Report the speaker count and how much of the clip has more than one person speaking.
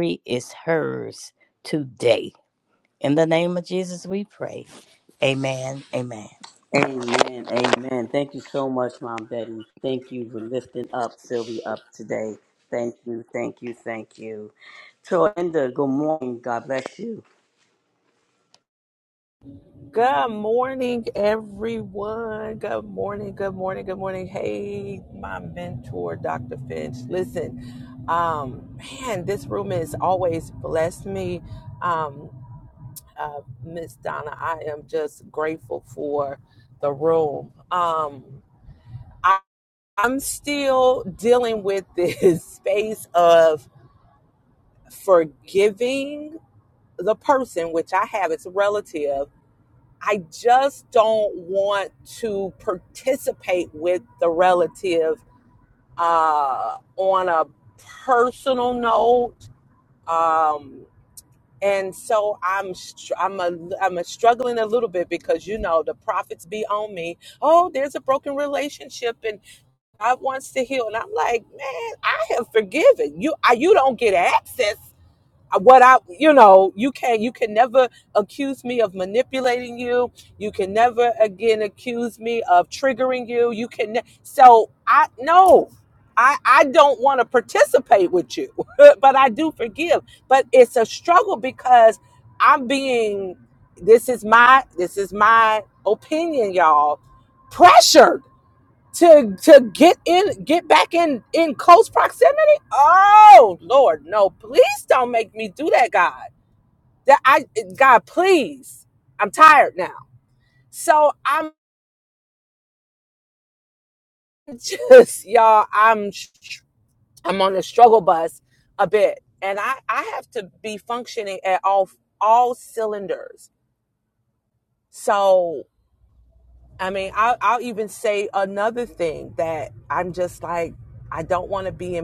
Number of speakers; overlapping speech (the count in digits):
3, no overlap